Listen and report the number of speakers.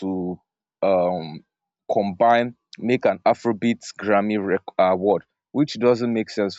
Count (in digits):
1